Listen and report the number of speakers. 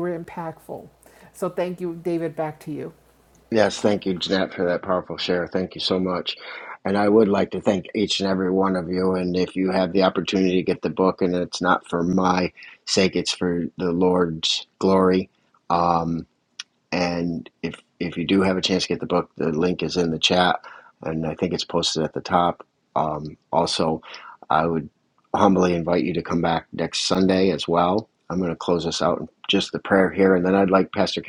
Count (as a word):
two